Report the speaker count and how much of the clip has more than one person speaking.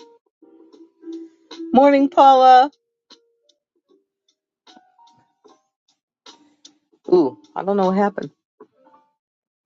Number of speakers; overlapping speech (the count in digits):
1, no overlap